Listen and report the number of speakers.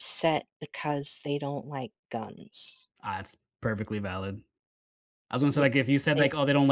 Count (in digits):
2